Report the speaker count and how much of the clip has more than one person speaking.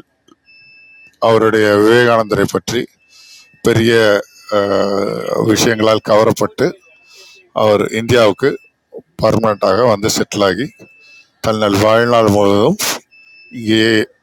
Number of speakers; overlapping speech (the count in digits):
1, no overlap